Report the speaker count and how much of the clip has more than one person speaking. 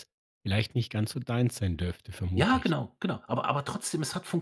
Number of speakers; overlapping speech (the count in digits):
2, about 8%